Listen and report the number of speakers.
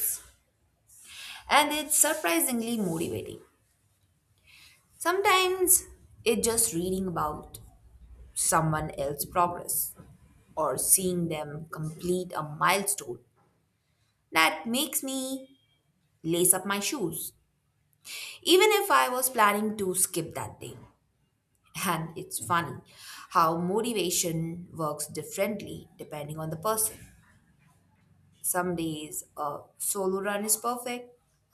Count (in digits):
1